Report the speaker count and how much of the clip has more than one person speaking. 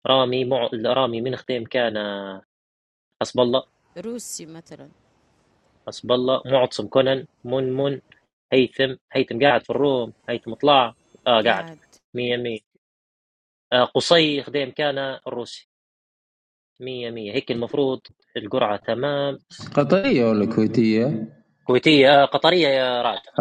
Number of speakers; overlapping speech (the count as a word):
three, about 1%